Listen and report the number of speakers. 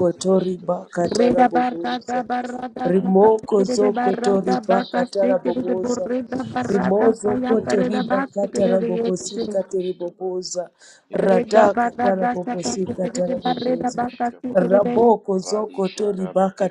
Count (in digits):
2